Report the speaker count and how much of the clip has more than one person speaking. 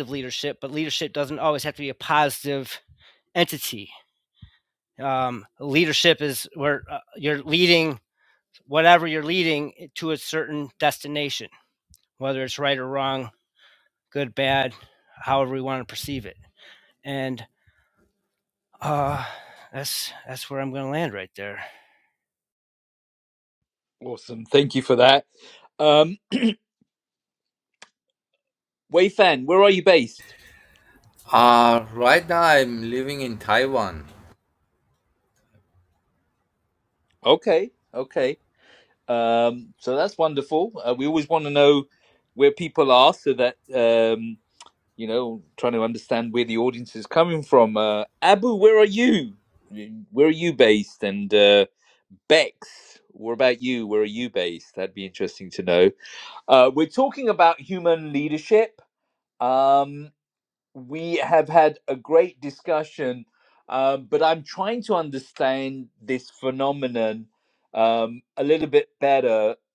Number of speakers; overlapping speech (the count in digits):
3, no overlap